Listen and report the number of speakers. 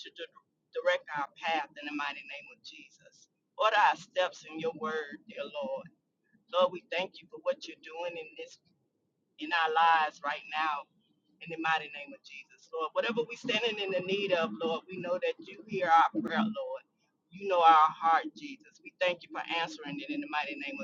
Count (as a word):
one